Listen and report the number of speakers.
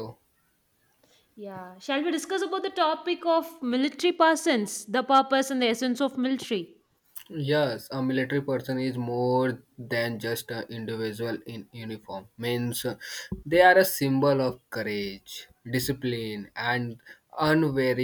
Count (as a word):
two